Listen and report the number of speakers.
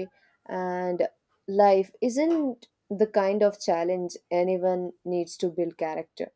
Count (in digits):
1